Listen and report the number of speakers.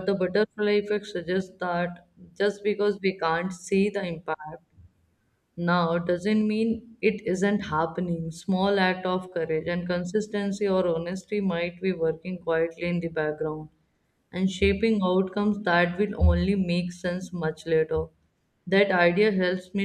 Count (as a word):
one